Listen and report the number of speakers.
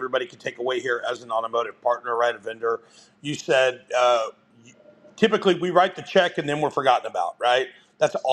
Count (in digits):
1